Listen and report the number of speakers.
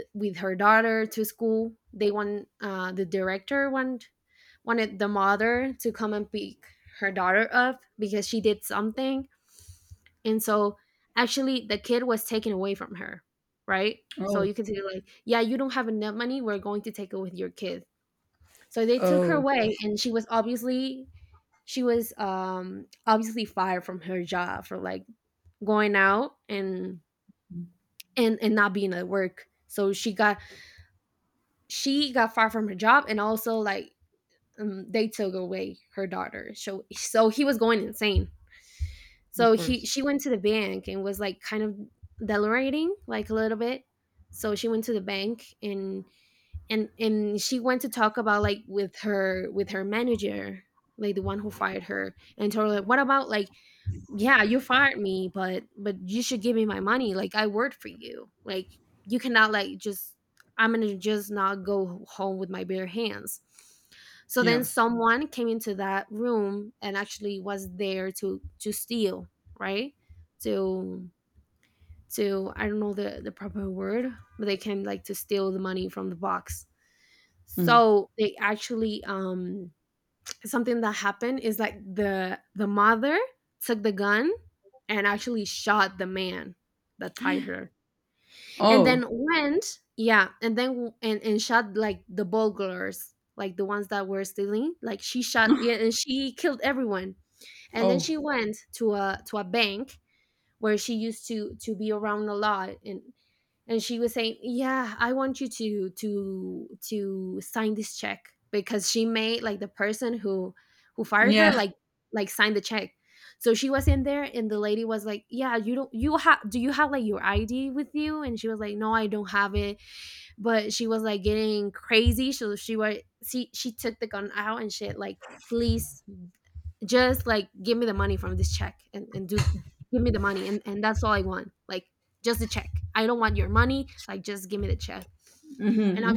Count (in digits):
2